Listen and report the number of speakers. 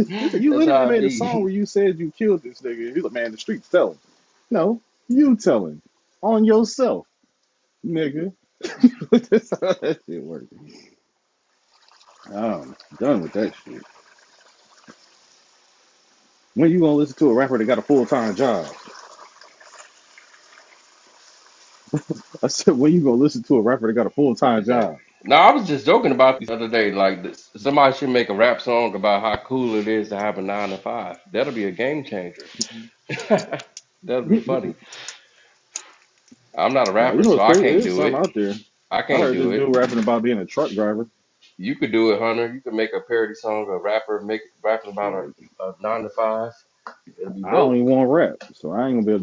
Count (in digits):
2